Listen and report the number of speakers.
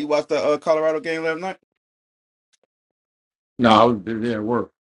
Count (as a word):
two